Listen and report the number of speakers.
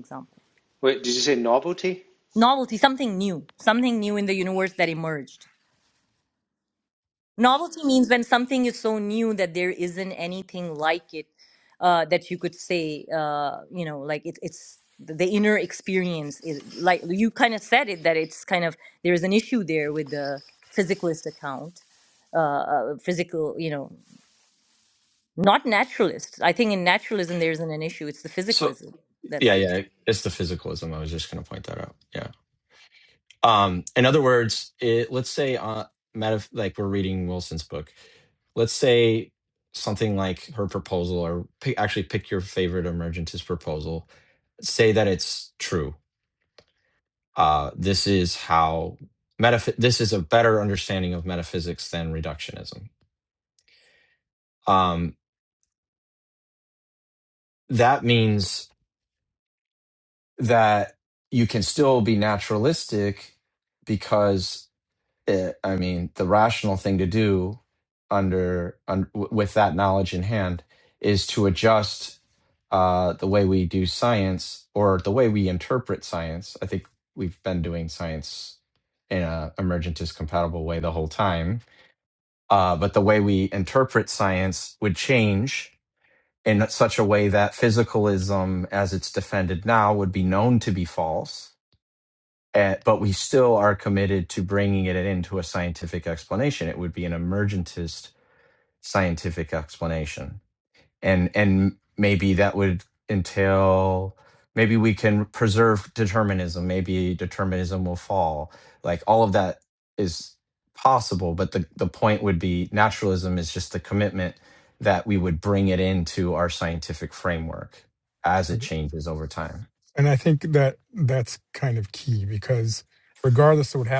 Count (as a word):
four